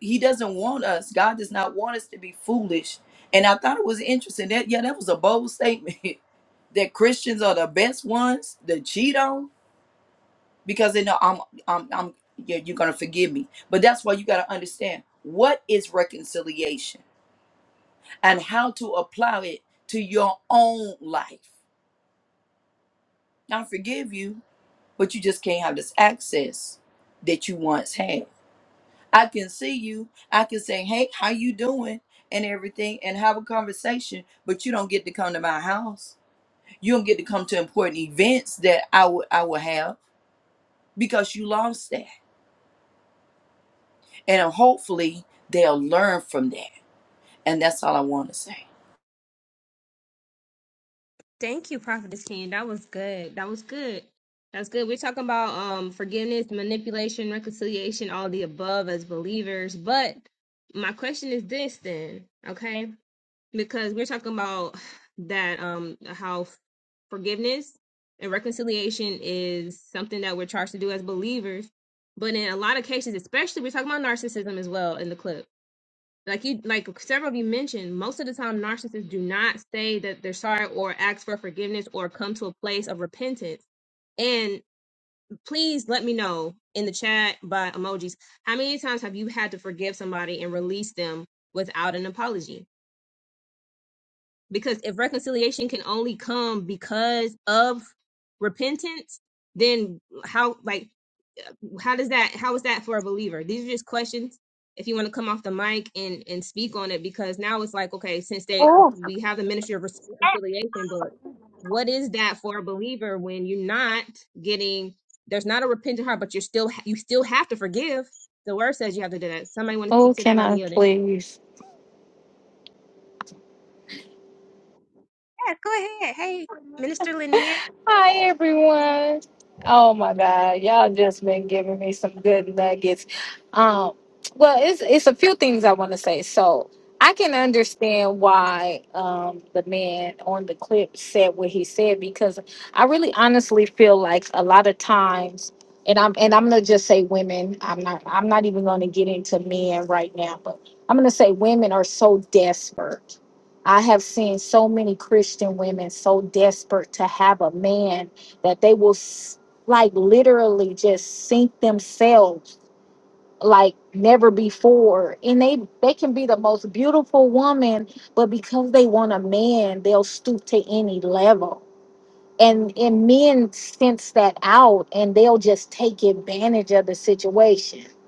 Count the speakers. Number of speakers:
3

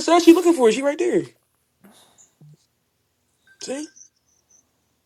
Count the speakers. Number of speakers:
1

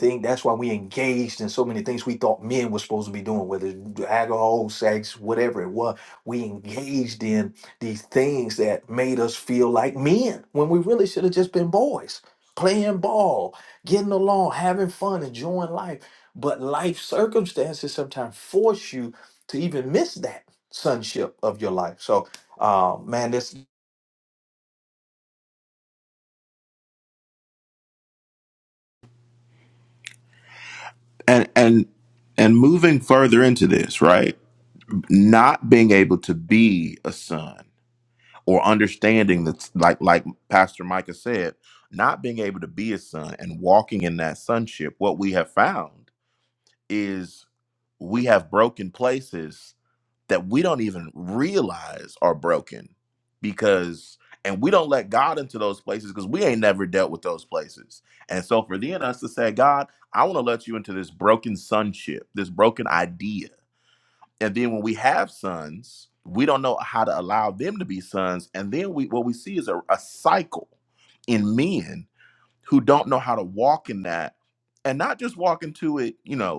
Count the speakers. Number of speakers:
2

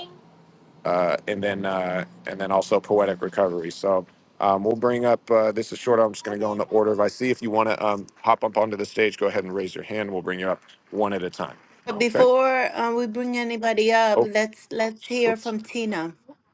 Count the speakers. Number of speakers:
2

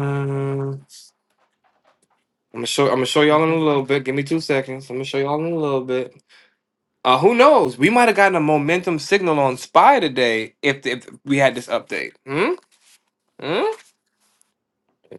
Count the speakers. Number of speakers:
1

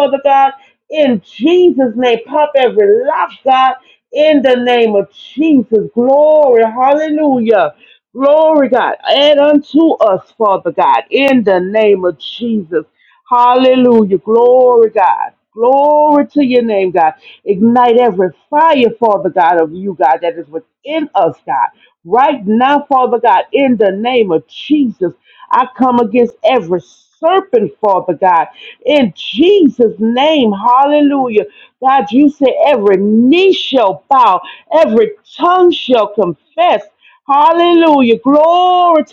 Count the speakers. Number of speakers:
1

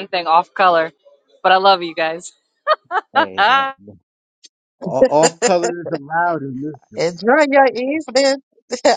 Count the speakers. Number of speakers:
3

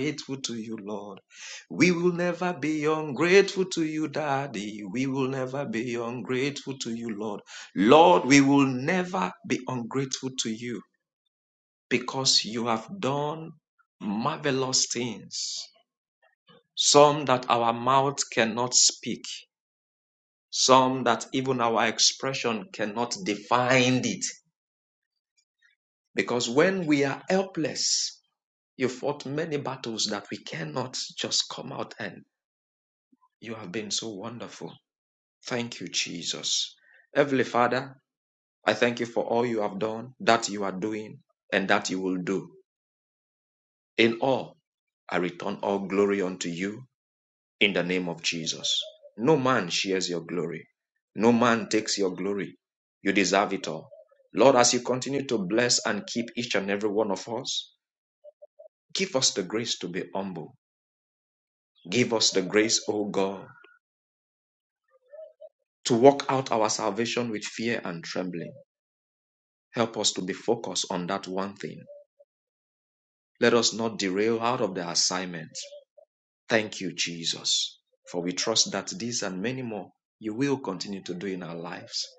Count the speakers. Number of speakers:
1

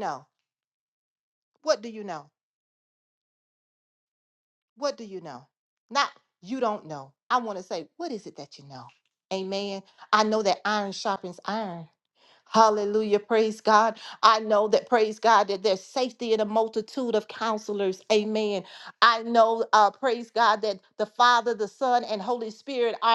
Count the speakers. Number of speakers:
1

